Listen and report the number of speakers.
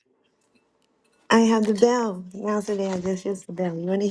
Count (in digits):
1